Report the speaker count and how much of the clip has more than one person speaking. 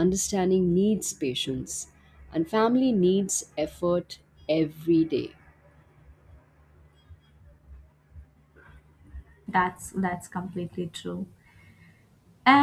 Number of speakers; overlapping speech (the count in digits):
2, no overlap